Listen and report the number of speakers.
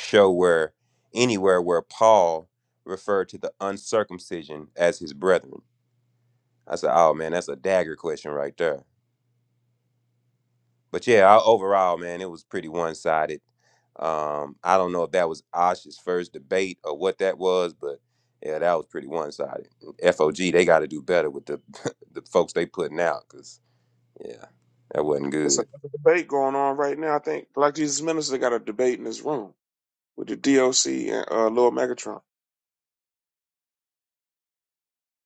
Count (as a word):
two